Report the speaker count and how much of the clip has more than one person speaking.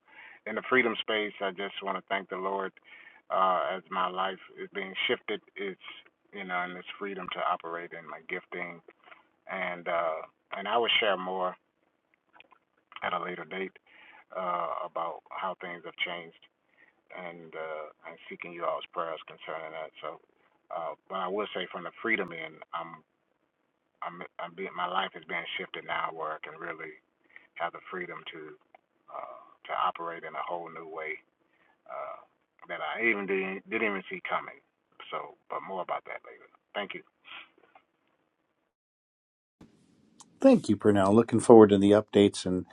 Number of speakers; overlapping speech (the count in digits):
2, no overlap